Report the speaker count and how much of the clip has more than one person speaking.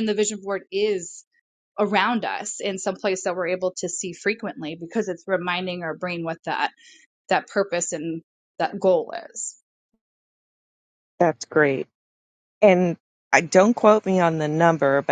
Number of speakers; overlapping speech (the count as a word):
two, no overlap